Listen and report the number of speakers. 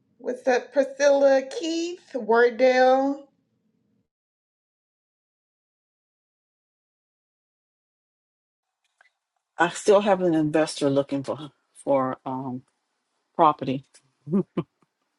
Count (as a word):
two